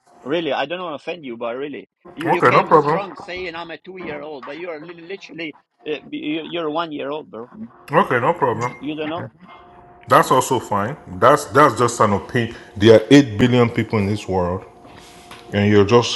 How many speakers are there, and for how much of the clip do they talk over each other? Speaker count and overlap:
2, about 5%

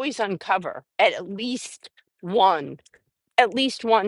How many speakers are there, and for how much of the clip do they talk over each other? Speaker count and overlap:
1, no overlap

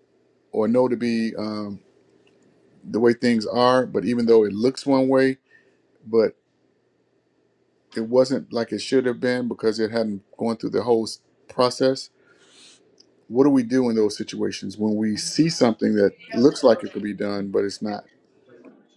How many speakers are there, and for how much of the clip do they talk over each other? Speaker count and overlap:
1, no overlap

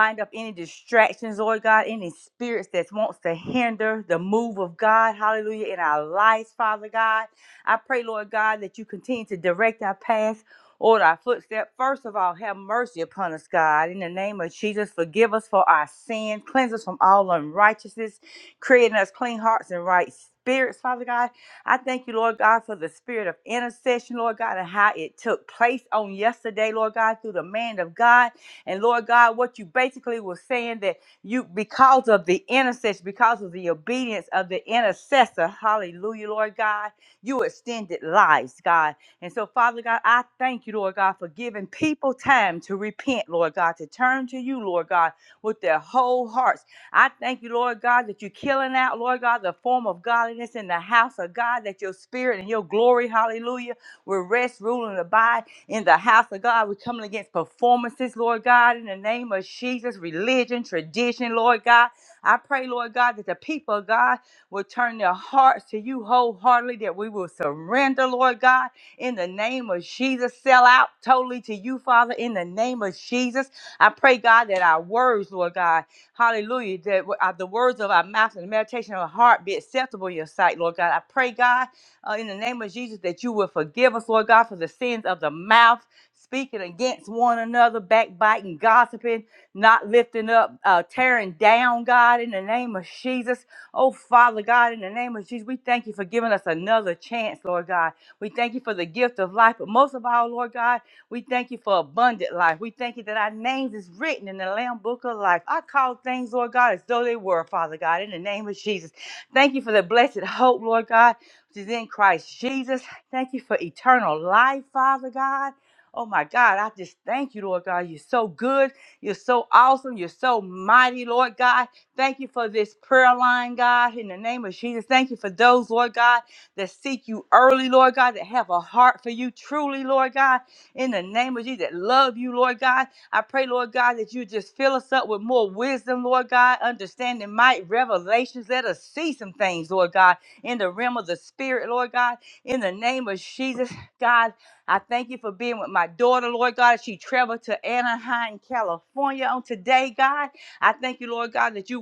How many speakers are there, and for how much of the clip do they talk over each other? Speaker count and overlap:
1, no overlap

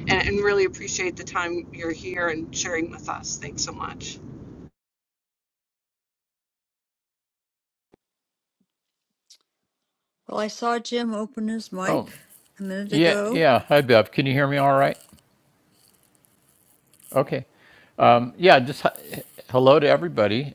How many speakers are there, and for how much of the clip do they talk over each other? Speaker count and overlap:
3, about 3%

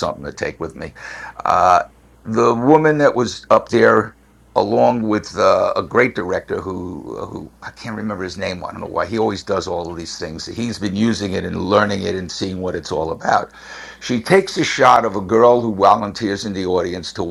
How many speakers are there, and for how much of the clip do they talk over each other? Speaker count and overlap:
1, no overlap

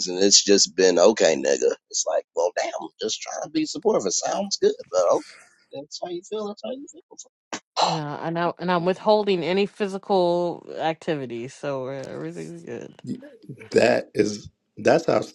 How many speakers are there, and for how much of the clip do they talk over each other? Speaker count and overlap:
3, no overlap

